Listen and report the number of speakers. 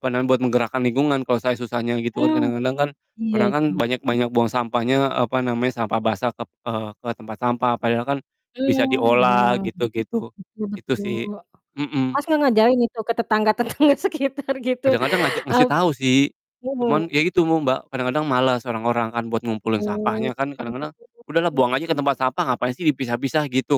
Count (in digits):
2